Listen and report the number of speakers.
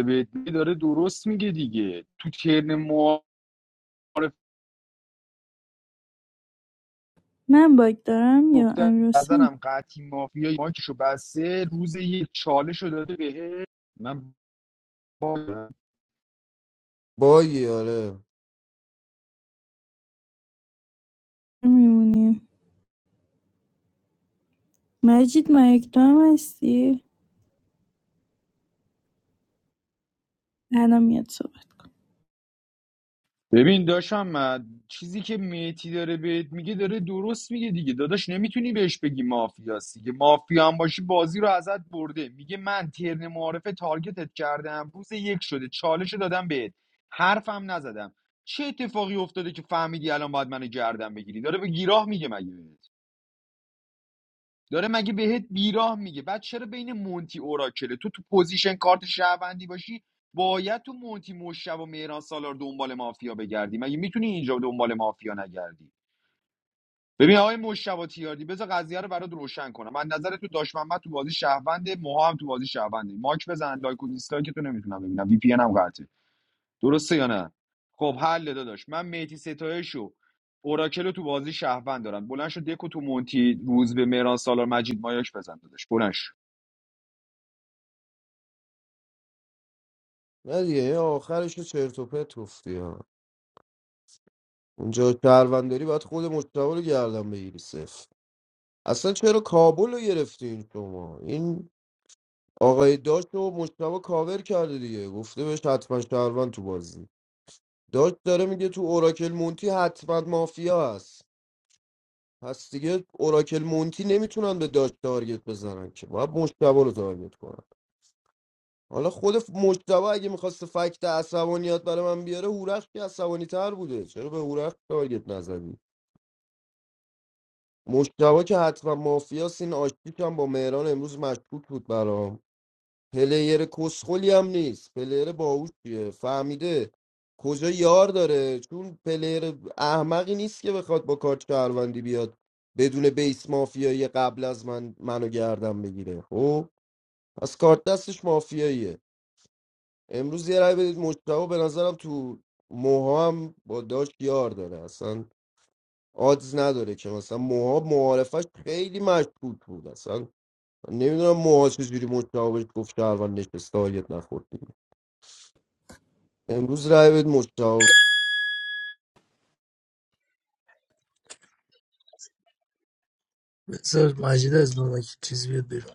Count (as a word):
four